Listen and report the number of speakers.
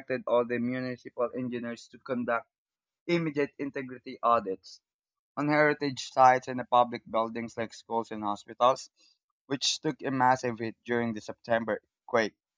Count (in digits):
1